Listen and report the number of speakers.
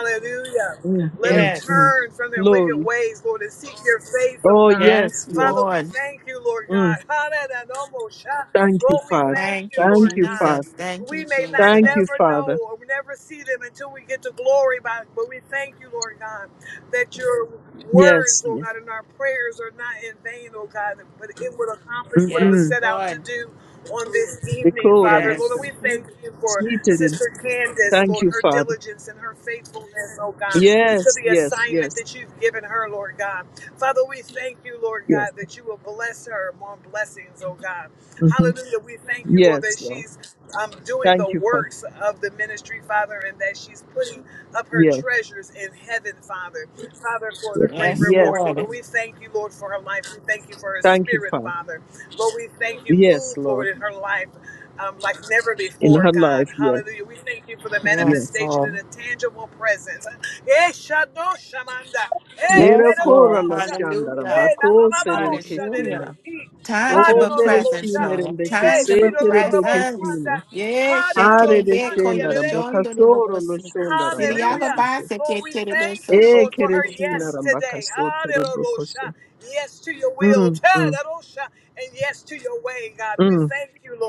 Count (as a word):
three